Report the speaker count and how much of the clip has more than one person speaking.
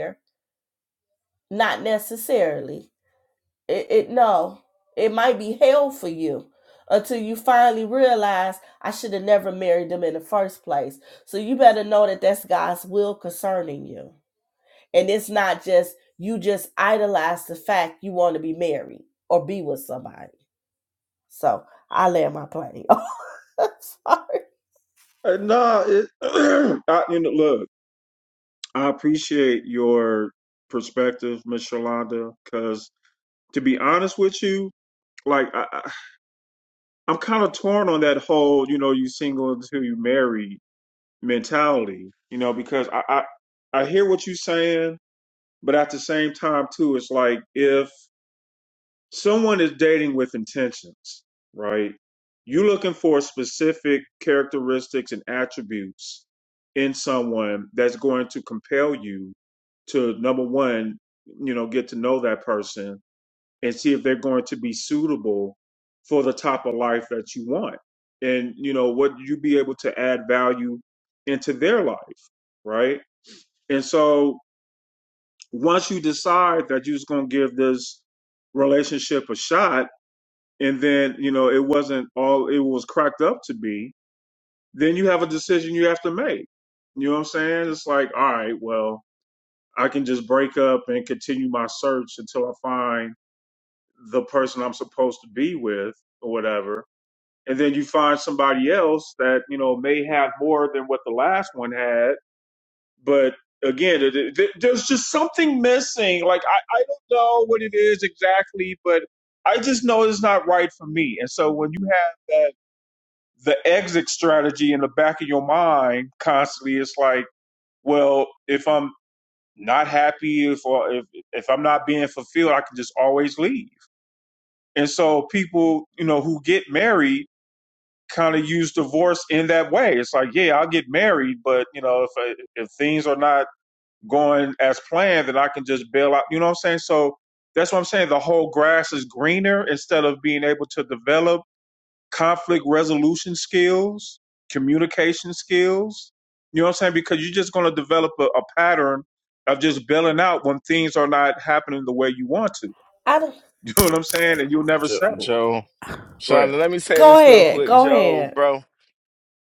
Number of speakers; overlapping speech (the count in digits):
3, about 1%